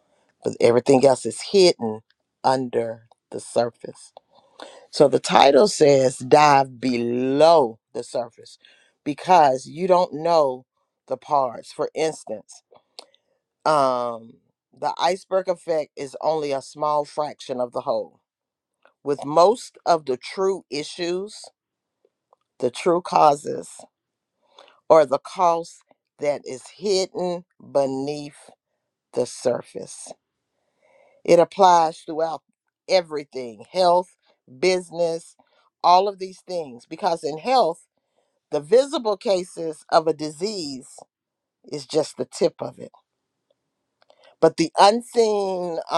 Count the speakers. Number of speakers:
one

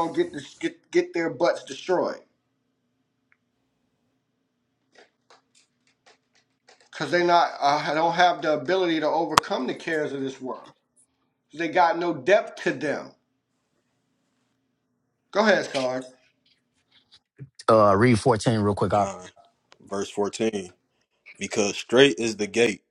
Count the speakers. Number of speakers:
three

